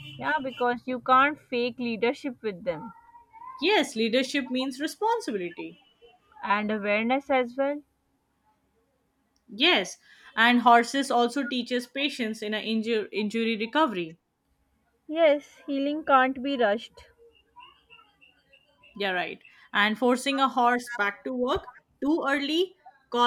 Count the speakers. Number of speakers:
two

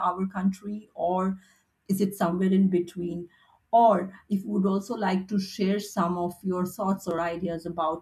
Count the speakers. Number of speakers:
one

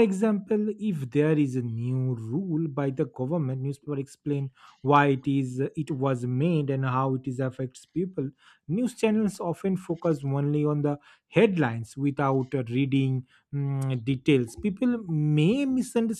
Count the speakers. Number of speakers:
one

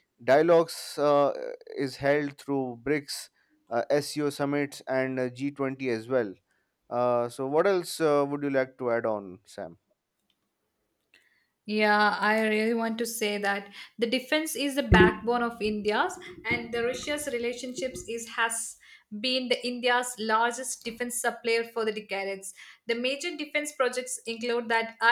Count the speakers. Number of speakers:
two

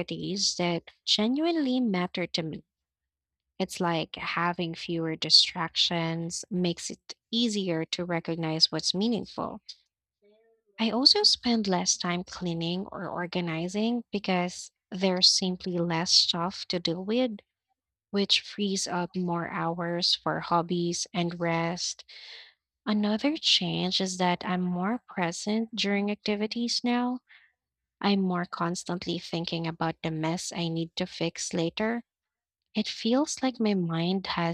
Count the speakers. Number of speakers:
one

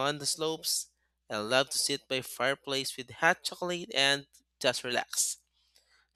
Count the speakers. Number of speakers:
one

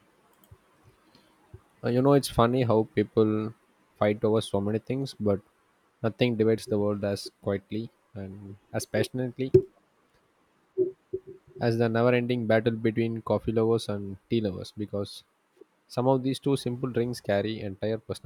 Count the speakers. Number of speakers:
one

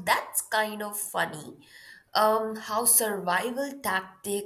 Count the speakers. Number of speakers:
one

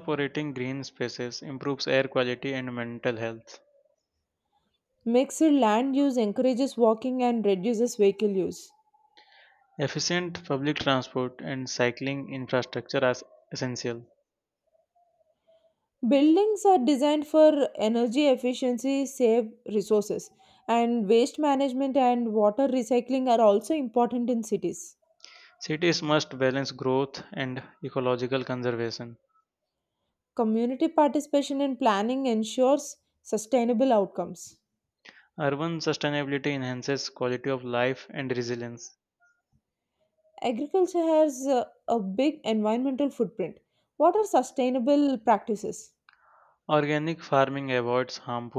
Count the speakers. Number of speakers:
two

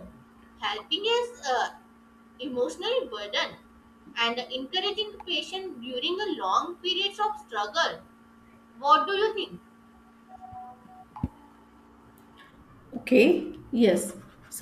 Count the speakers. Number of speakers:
two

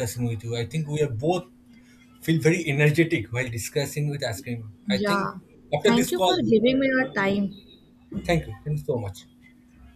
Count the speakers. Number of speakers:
two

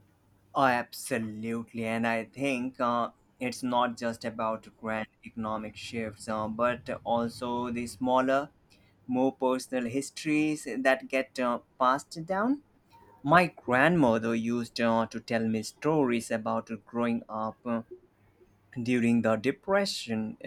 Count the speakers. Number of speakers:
one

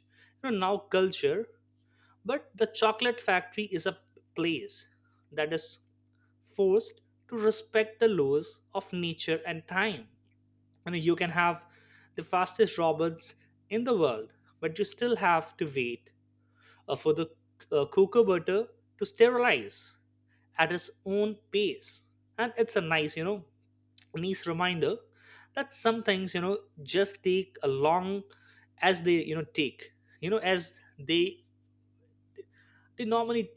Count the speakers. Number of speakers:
one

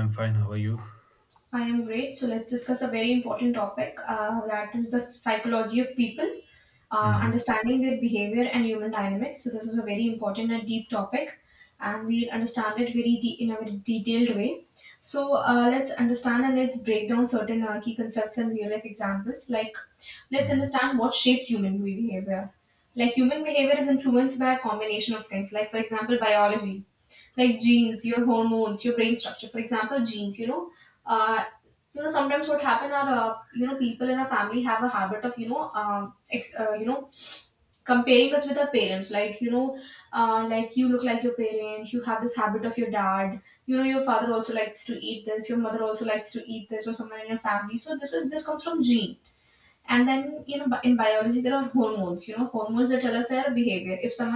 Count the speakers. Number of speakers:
two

